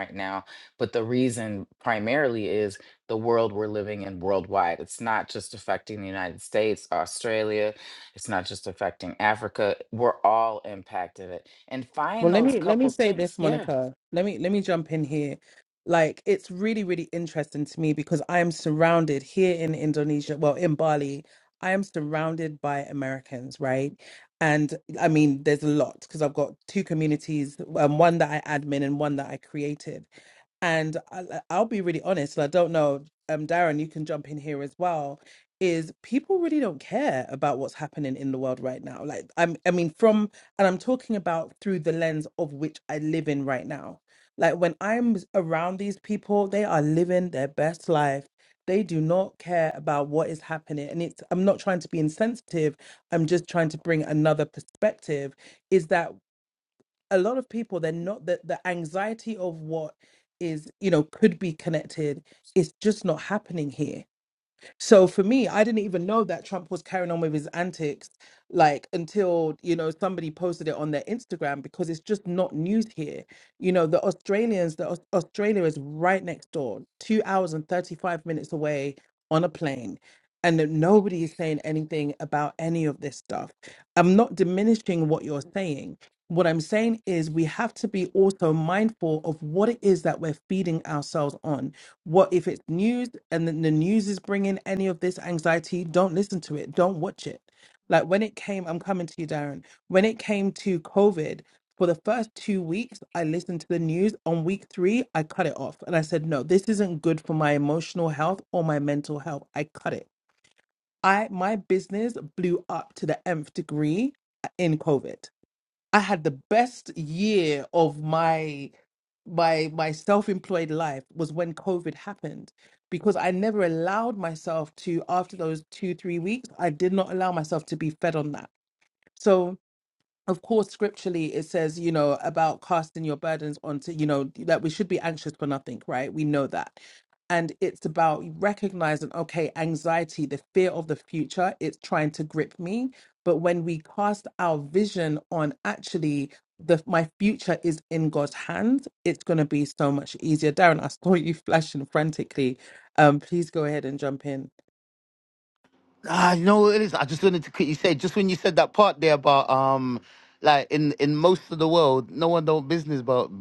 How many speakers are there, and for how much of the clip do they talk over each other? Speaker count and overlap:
3, about 1%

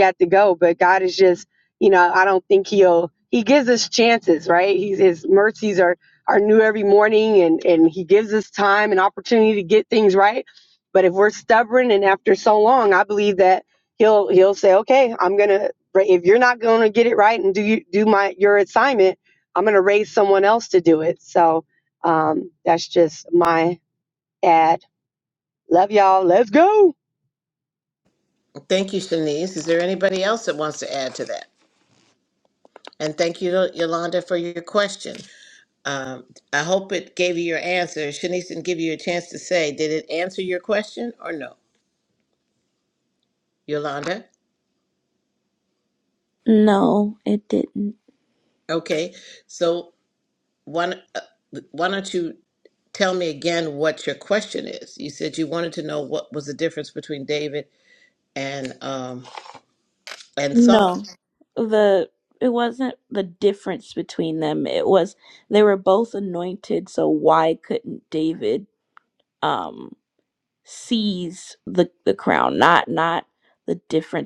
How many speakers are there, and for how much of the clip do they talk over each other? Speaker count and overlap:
3, about 1%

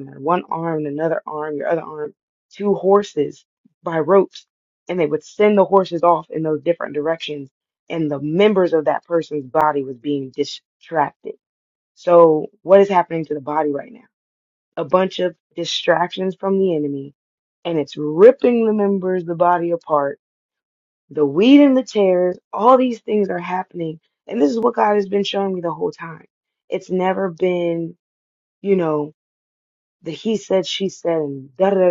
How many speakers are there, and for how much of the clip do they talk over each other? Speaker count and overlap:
1, no overlap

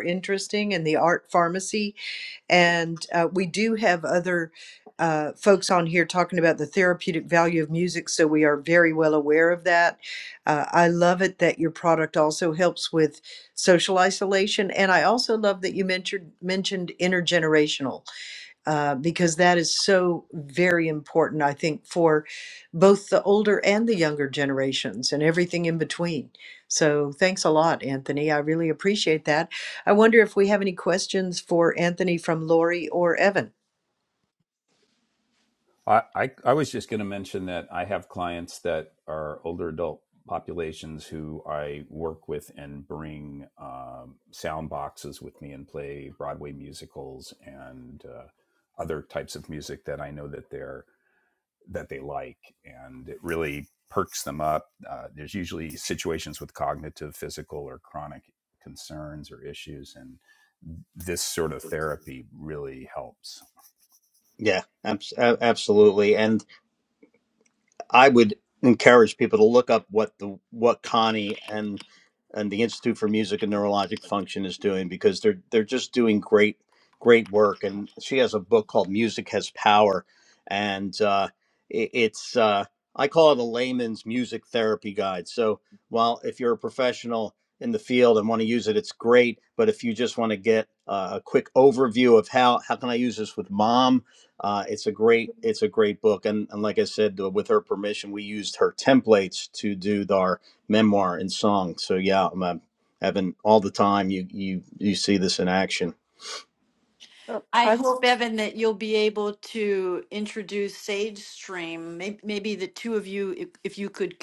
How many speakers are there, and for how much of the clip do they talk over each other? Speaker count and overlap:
4, no overlap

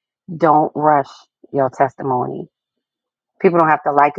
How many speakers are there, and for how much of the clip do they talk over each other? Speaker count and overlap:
1, no overlap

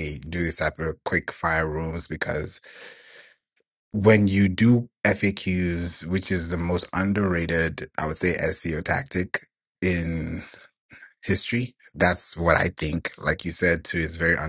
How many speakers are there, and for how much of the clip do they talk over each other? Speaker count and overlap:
1, no overlap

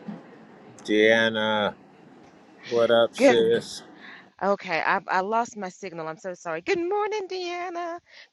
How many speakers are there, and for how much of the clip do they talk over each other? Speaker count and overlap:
2, about 3%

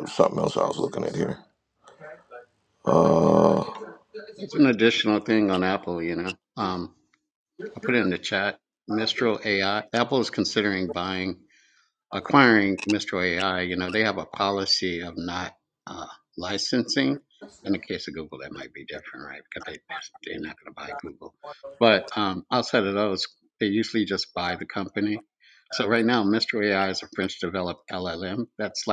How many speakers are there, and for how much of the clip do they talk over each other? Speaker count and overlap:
2, no overlap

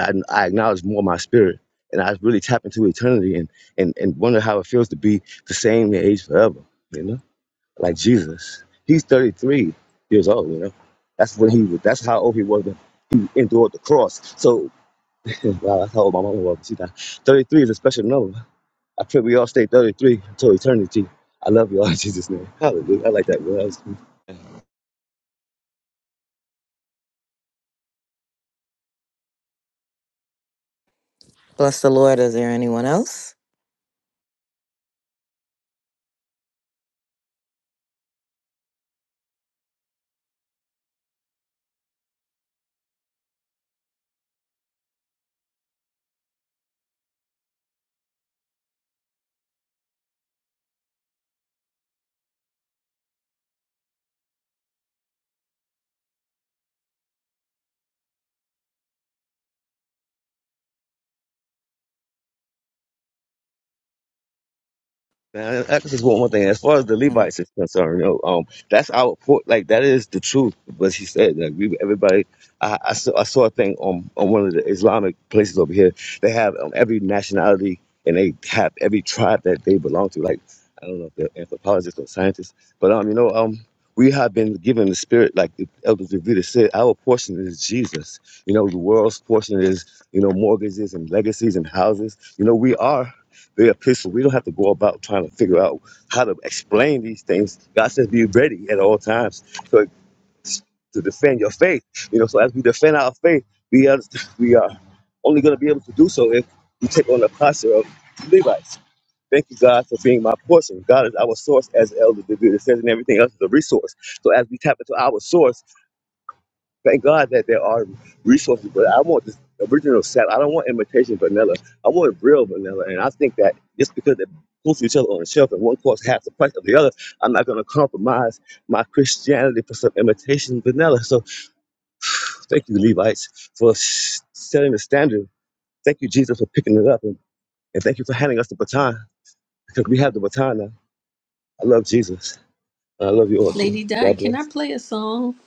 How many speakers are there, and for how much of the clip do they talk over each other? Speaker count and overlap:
3, about 1%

